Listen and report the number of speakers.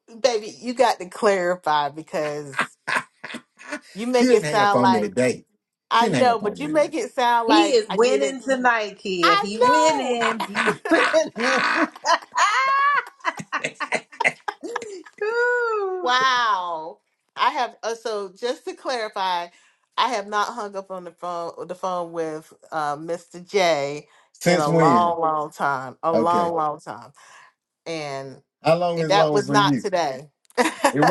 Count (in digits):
3